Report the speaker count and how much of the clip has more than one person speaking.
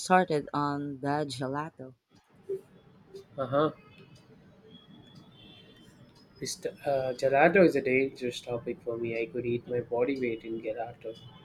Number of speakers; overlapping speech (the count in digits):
2, no overlap